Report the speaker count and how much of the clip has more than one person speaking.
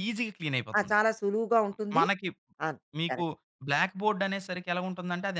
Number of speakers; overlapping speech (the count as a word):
two, about 9%